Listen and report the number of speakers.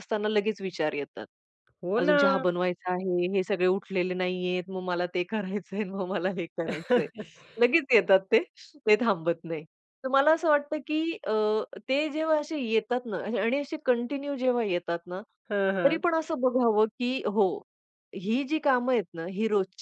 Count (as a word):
two